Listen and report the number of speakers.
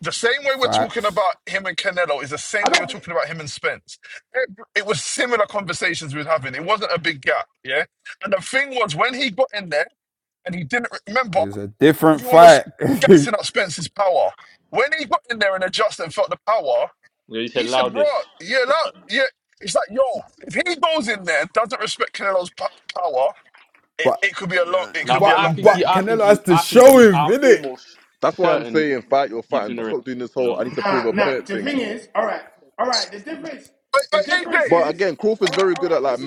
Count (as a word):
five